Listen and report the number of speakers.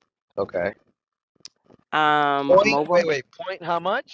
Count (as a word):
two